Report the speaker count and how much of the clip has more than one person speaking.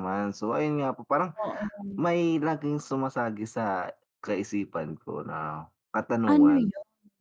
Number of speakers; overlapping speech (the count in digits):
2, about 7%